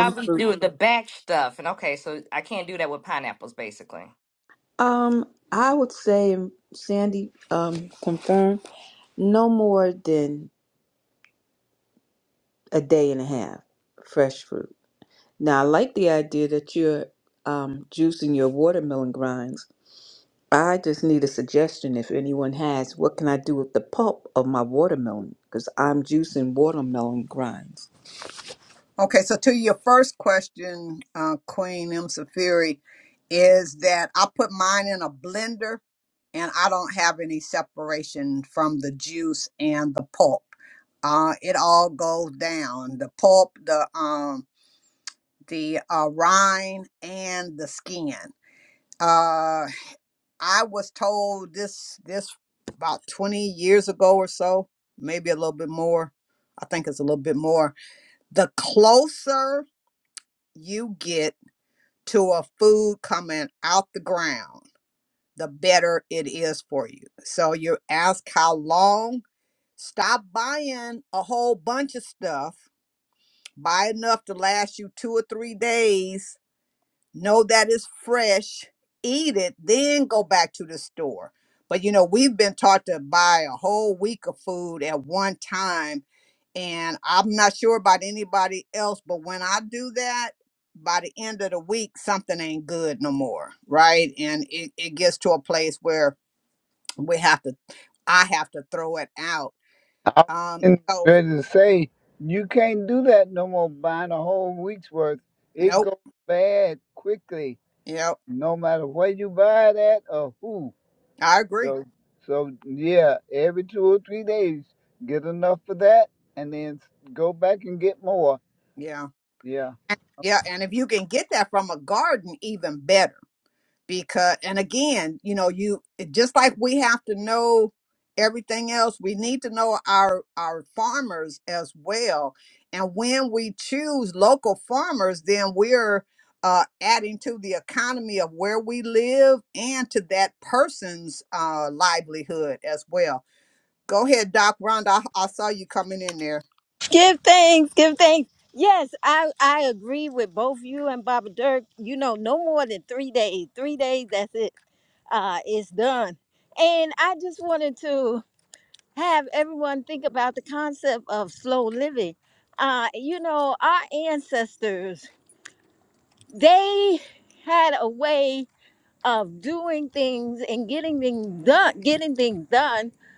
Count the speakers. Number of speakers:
five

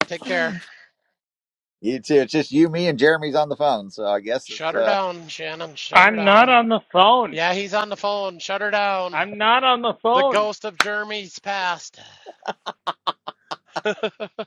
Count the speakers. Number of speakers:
three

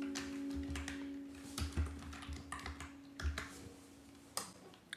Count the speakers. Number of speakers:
zero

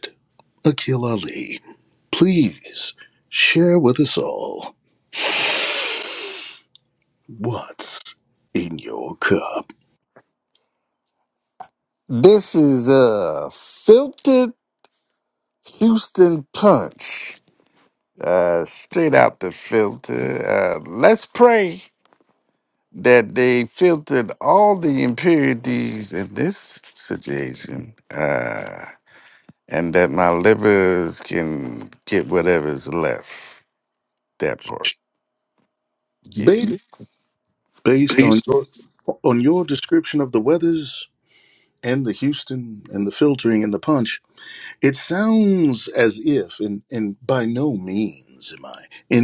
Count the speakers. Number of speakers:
two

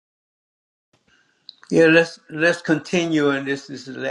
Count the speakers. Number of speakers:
one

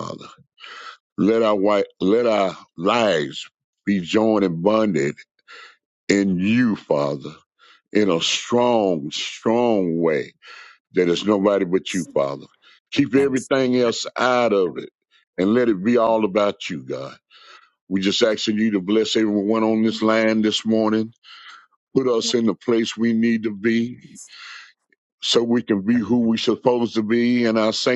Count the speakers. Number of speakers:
one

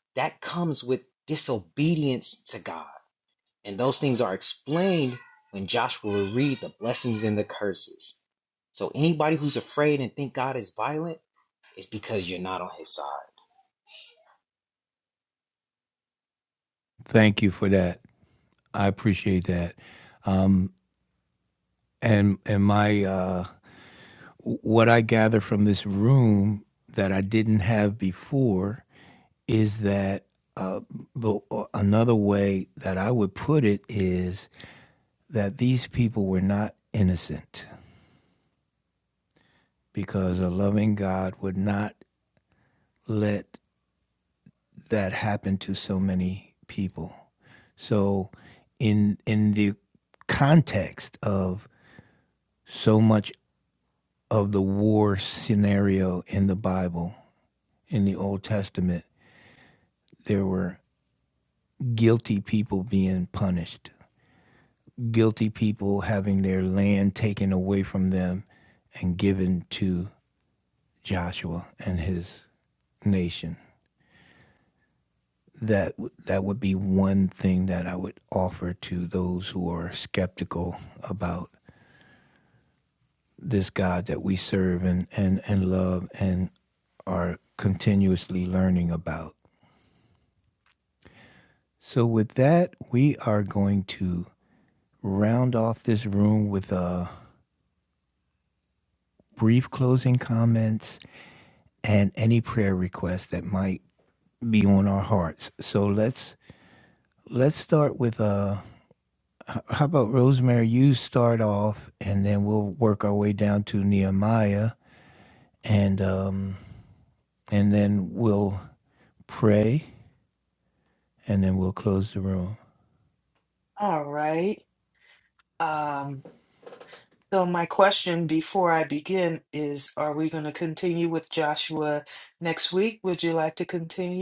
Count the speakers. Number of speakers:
three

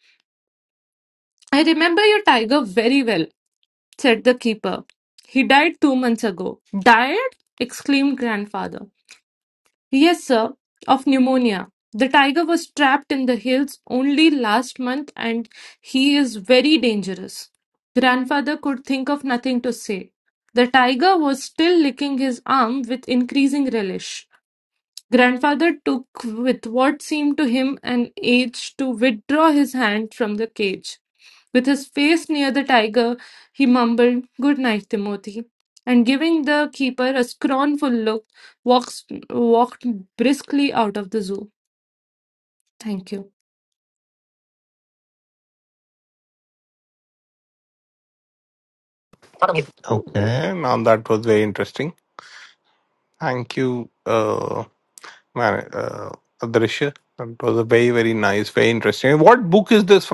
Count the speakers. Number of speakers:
two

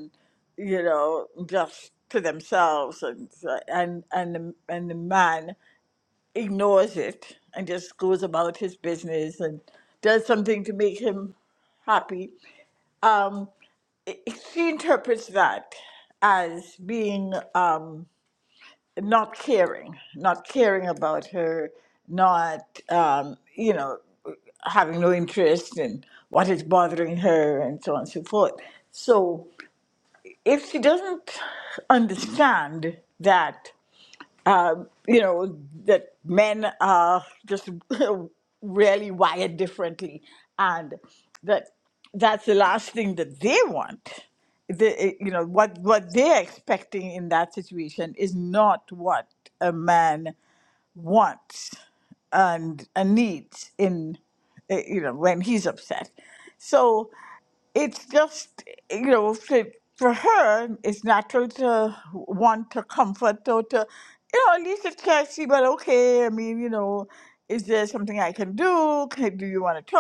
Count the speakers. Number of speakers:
one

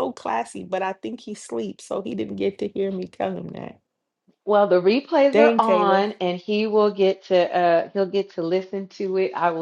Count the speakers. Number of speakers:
two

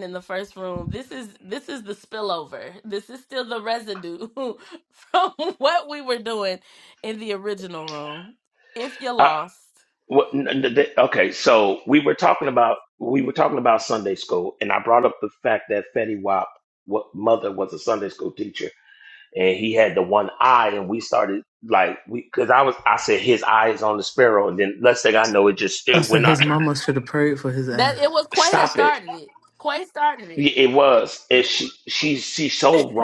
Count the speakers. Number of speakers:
three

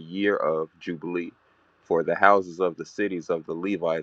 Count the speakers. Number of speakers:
one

